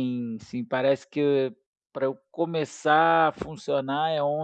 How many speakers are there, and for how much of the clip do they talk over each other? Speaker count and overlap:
one, no overlap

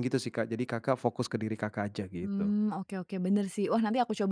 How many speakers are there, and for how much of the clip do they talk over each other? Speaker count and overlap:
two, about 6%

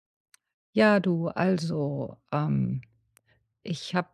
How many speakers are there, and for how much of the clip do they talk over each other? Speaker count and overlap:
one, no overlap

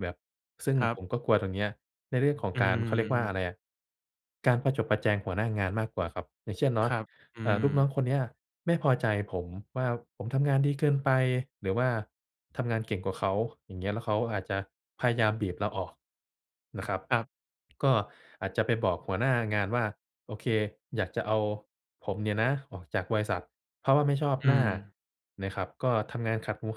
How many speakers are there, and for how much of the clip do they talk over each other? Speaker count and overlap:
two, about 7%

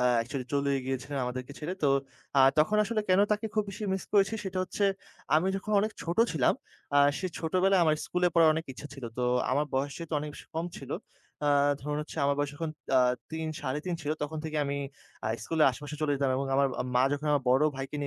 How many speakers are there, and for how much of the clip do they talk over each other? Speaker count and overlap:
one, no overlap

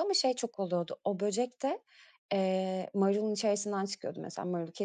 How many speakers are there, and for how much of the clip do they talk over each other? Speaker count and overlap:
one, no overlap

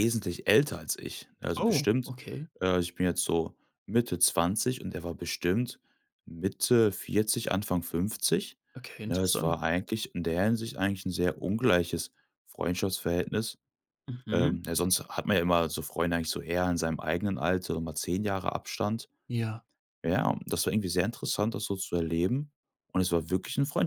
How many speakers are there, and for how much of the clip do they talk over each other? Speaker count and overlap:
two, about 5%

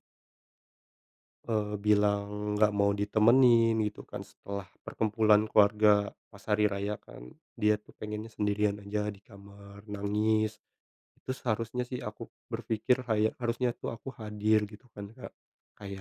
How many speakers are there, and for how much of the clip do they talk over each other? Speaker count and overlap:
one, no overlap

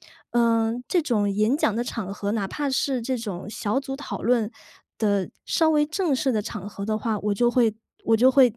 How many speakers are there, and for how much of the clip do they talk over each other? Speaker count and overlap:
one, no overlap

